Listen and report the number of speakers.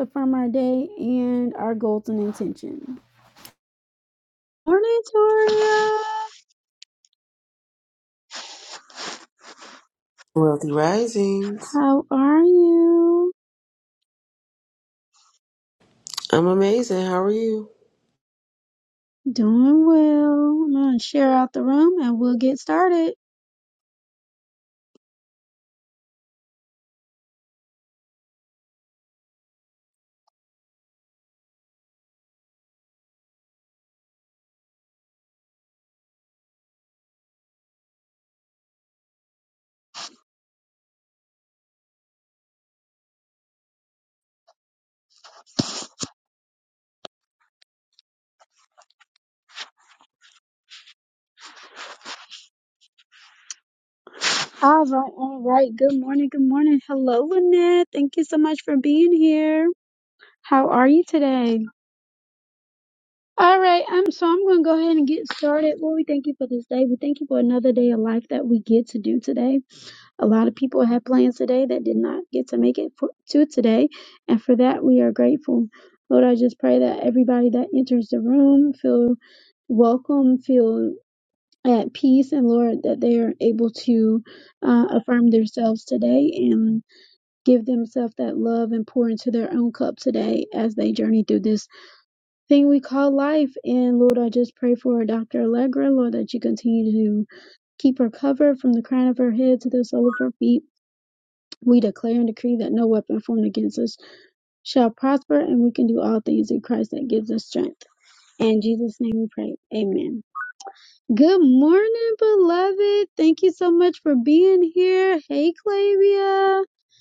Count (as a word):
two